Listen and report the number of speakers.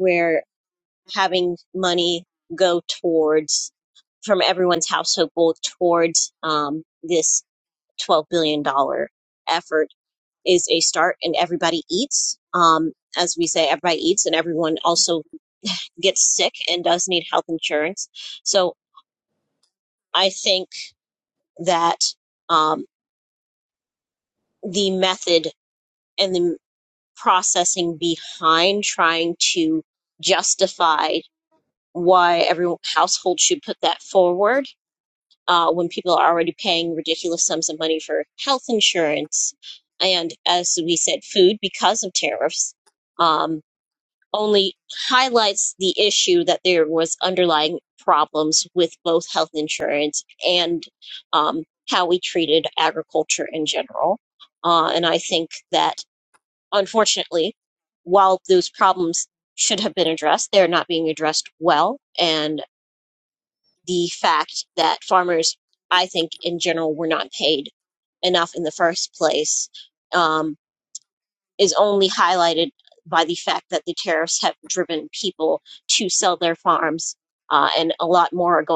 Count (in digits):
1